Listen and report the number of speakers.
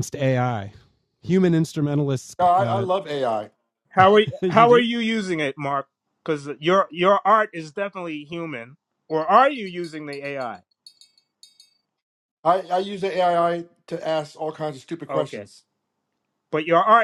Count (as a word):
three